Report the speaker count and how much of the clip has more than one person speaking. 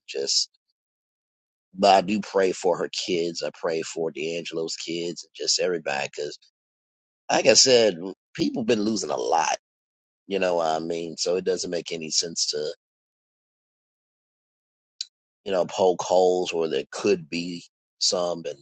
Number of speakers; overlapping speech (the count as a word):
one, no overlap